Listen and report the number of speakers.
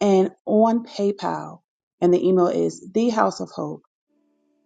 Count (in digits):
1